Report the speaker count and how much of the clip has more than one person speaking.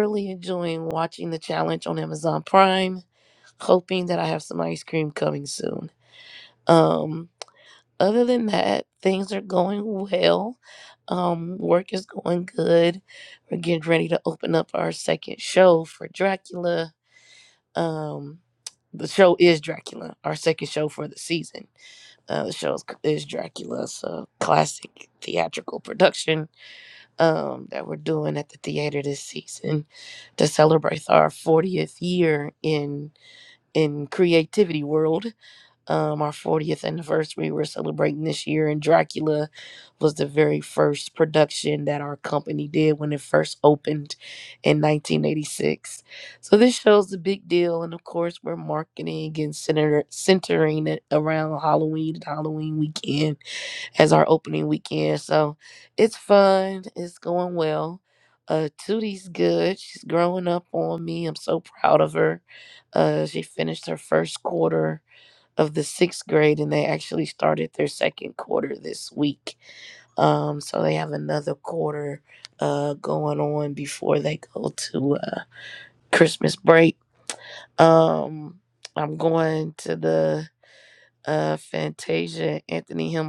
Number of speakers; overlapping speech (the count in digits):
1, no overlap